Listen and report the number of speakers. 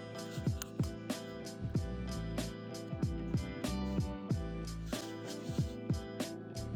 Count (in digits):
0